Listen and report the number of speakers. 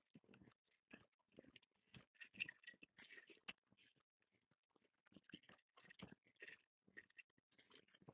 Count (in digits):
0